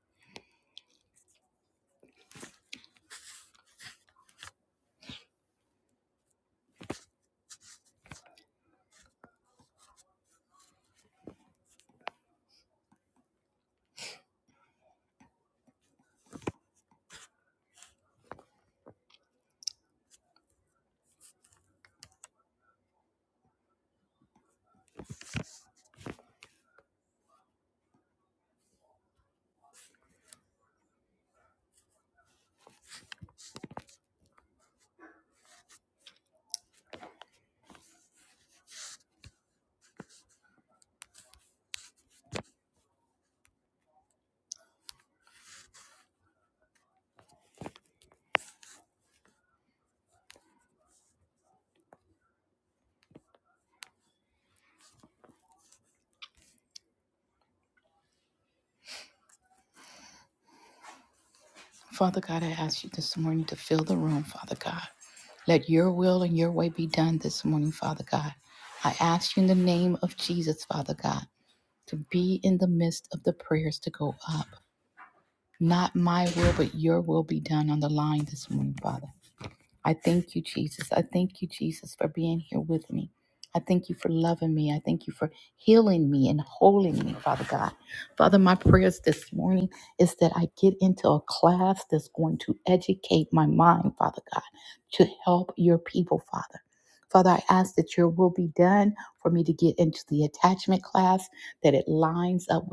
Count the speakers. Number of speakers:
one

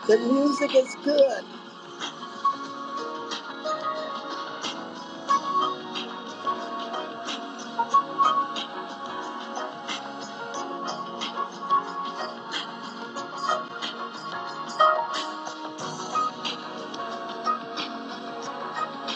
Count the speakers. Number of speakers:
one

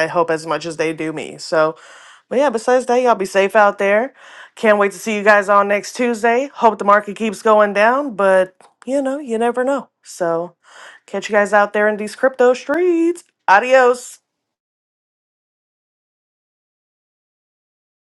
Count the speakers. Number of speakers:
one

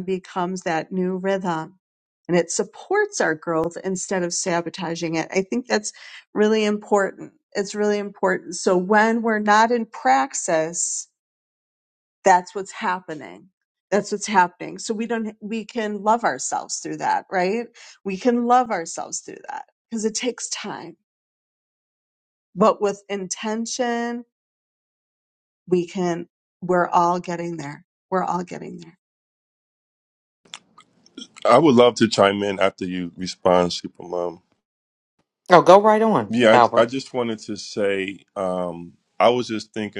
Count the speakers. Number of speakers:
three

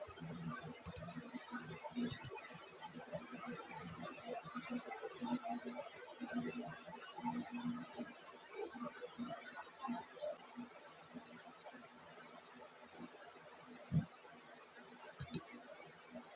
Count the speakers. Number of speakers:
zero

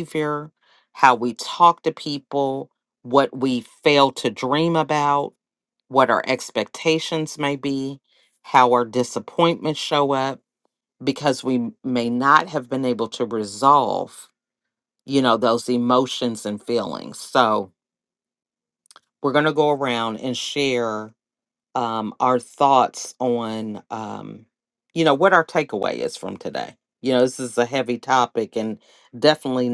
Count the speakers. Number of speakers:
one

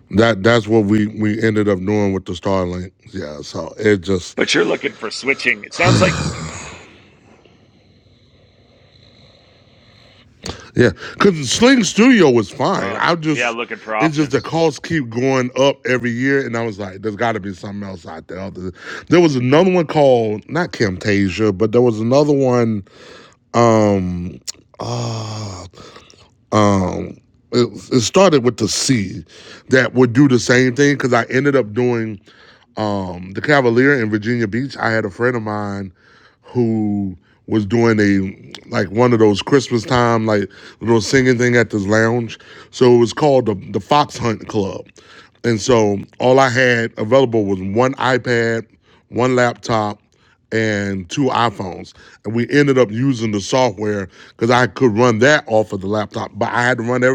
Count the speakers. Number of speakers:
two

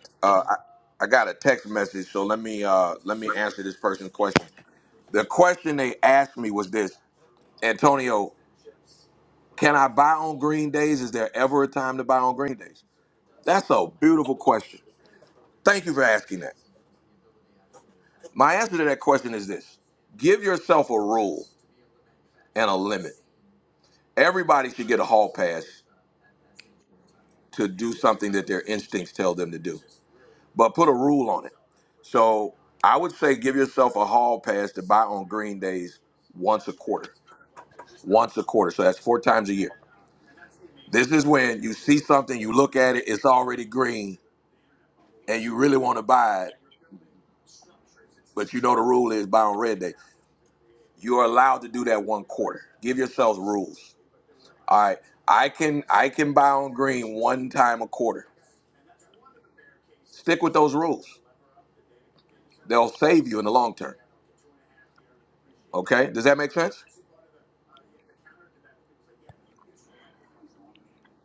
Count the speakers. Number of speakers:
one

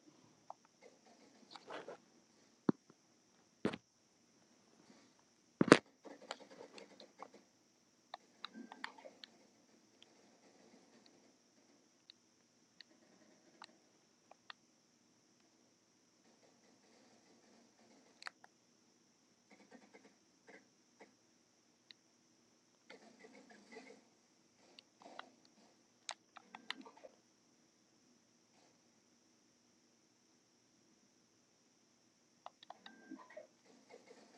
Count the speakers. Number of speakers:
zero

